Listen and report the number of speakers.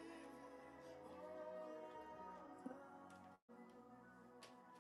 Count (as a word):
zero